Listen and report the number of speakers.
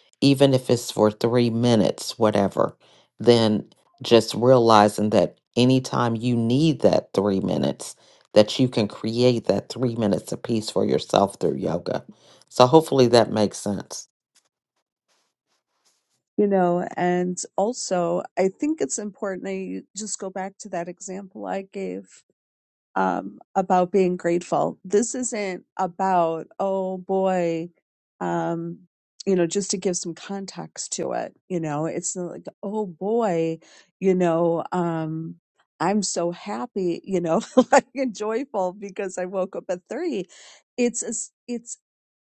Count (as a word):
two